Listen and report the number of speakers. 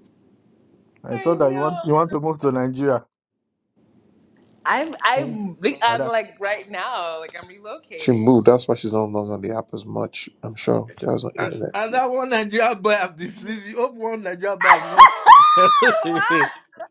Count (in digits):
3